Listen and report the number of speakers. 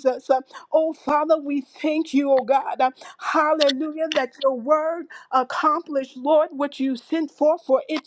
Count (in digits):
1